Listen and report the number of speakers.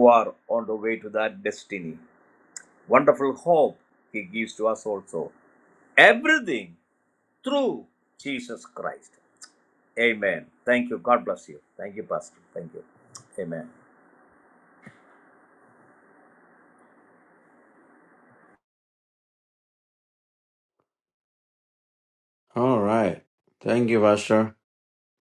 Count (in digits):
2